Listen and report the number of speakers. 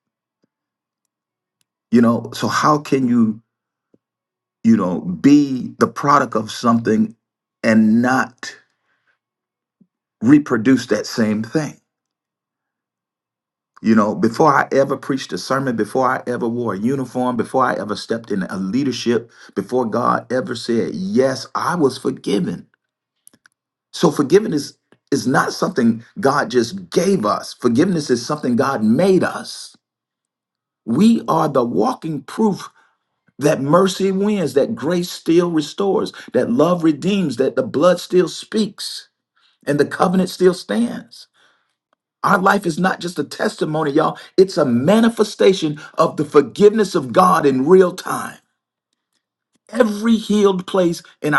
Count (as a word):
one